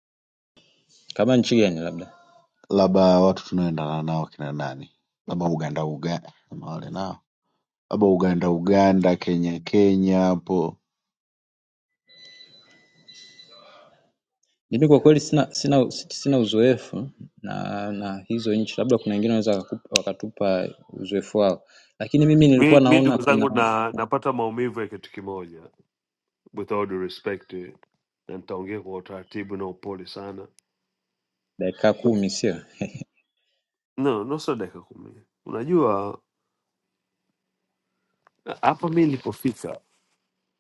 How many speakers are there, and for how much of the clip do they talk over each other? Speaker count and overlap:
3, about 2%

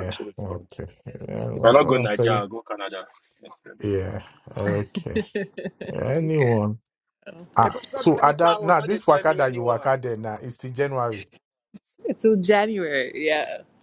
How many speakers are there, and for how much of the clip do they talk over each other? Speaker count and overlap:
3, about 31%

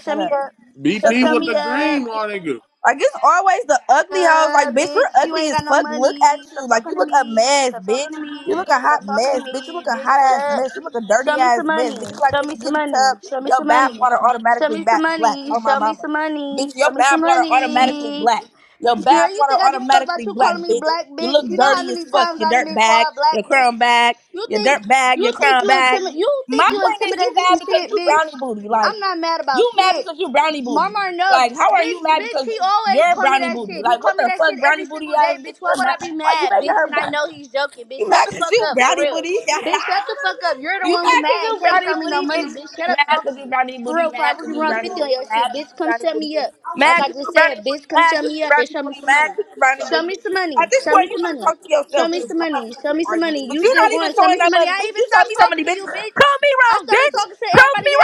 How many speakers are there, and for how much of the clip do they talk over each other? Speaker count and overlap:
3, about 73%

